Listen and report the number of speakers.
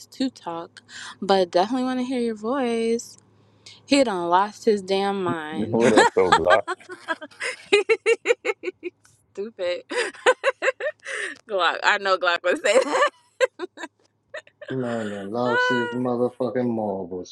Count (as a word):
three